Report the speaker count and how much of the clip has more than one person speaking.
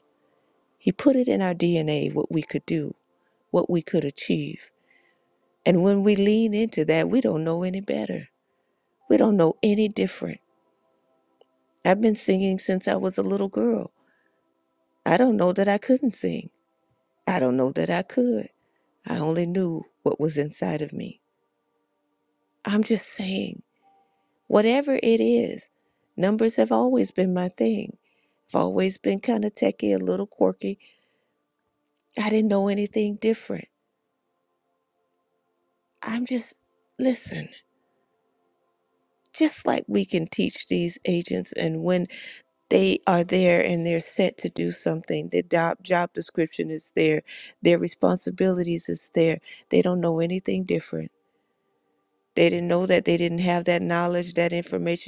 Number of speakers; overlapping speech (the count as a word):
one, no overlap